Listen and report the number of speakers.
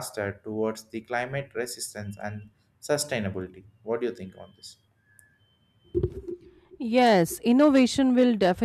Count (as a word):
two